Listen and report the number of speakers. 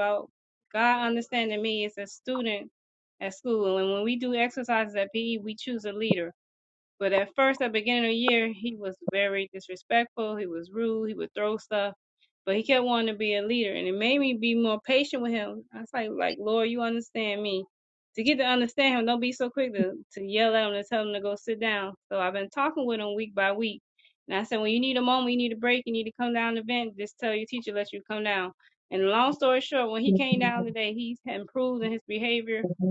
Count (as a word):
one